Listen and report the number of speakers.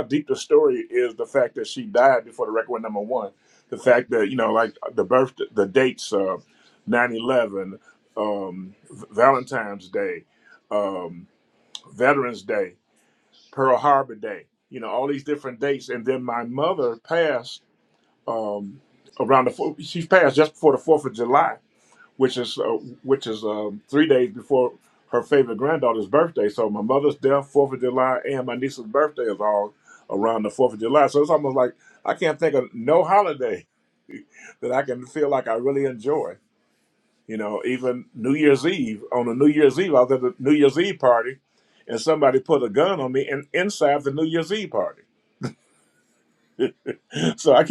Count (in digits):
1